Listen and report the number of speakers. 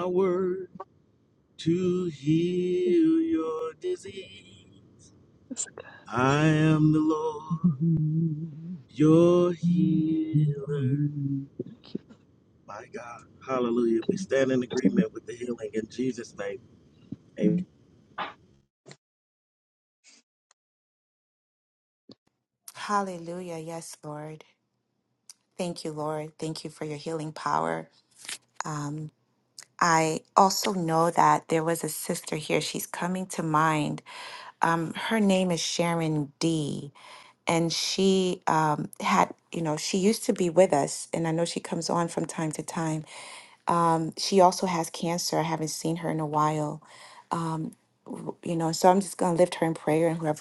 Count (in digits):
3